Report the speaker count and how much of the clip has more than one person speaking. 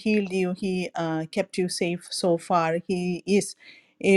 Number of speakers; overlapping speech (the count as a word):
one, no overlap